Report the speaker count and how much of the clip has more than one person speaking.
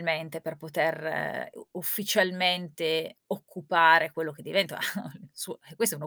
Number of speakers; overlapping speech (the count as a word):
one, no overlap